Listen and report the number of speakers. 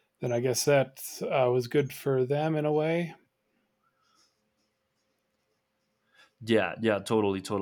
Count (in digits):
2